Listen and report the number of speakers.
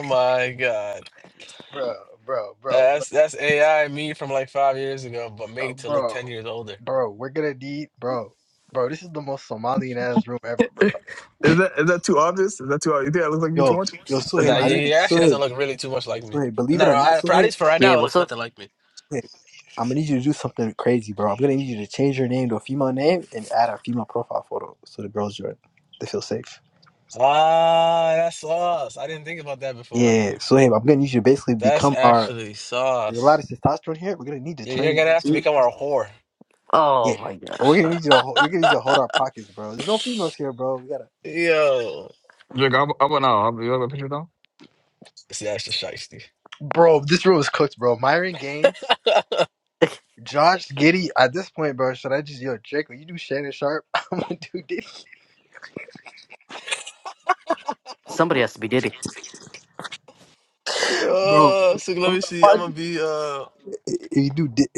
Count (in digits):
4